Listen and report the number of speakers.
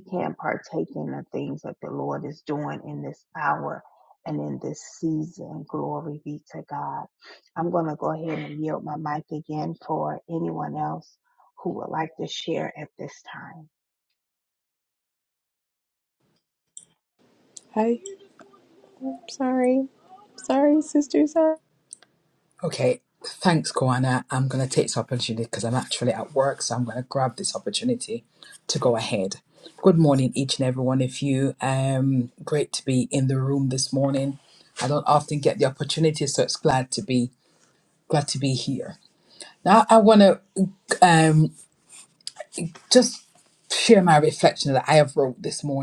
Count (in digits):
3